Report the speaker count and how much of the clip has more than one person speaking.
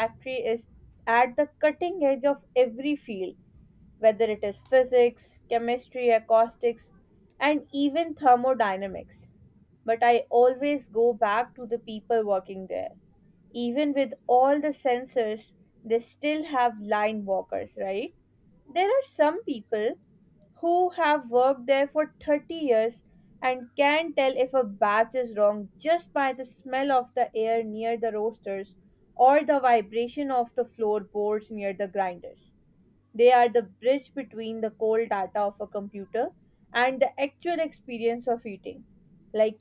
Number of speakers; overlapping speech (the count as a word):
one, no overlap